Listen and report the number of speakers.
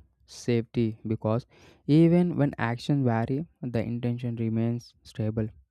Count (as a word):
one